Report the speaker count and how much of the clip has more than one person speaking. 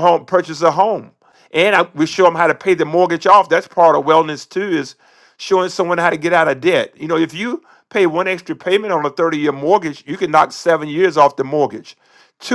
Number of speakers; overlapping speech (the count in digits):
1, no overlap